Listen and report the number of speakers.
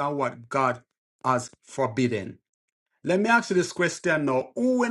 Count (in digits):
1